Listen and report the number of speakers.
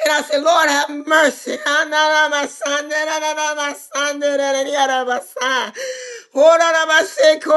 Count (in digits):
1